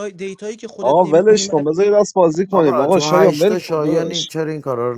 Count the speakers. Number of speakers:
three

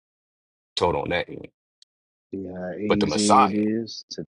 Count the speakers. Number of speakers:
two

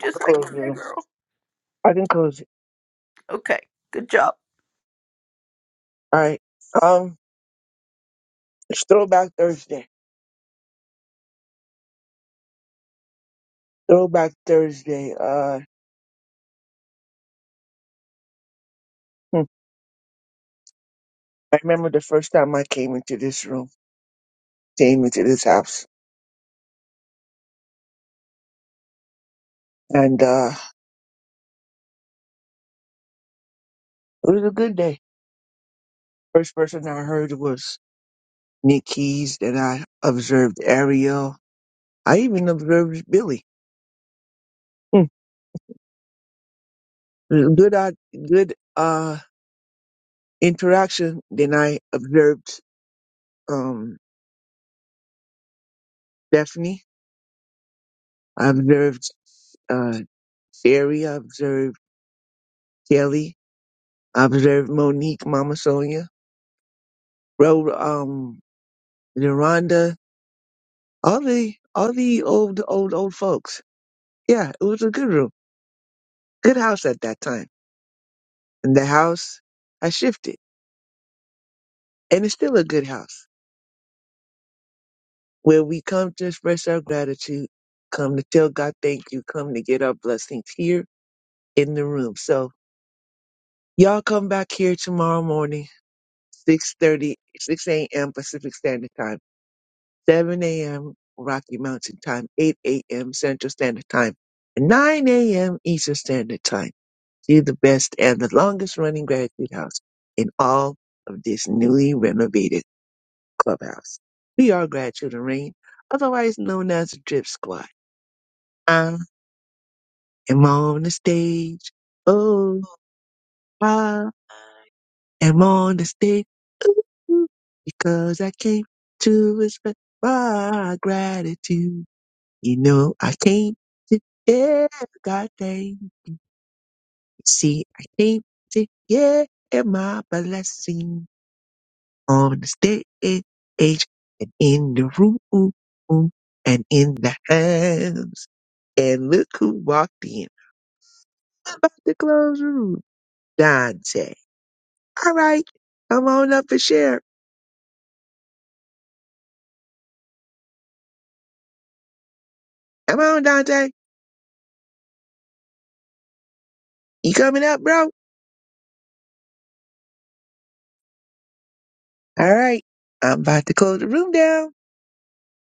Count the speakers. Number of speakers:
two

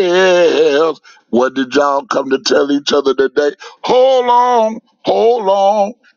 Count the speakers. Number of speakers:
one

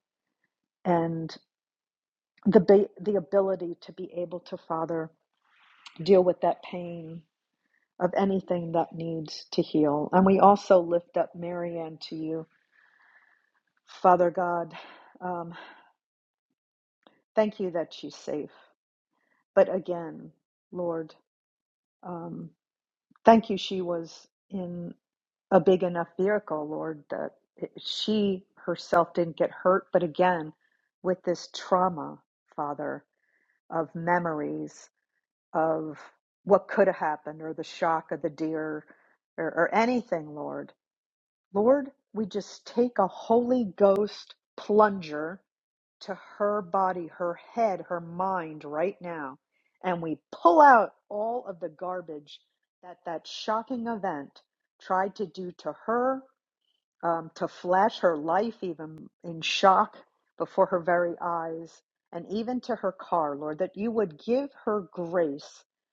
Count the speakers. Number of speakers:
one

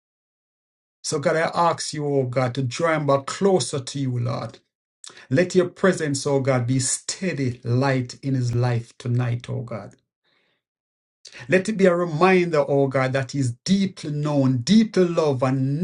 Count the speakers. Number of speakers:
one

